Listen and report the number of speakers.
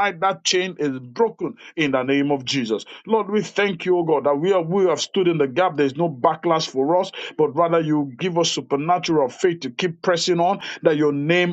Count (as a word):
one